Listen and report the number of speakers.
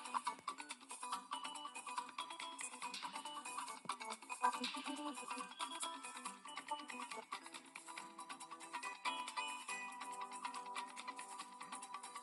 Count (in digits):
0